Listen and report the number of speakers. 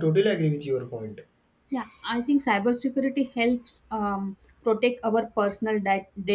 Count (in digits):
2